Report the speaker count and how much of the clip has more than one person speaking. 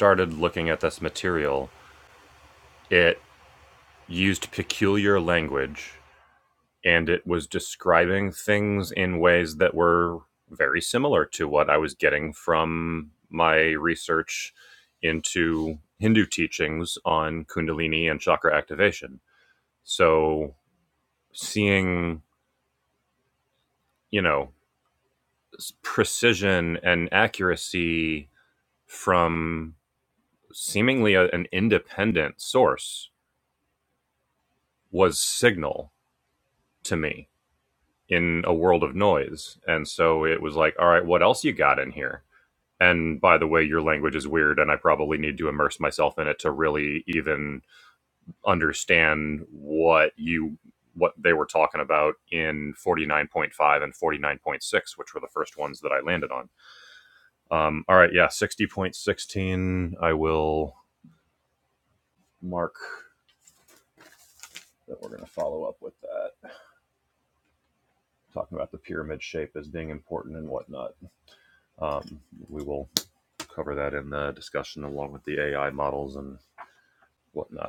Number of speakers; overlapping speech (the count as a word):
one, no overlap